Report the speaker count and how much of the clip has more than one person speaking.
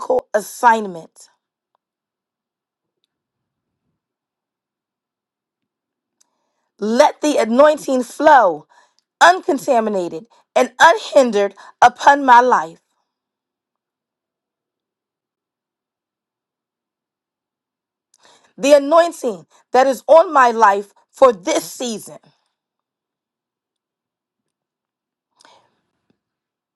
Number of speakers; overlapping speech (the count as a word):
one, no overlap